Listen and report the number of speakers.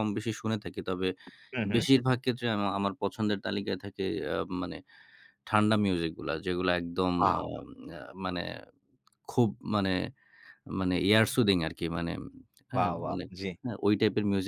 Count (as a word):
two